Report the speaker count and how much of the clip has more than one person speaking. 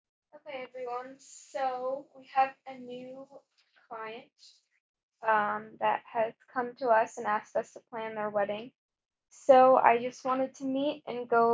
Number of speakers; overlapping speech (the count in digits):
1, no overlap